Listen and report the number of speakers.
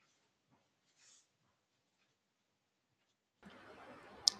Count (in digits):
0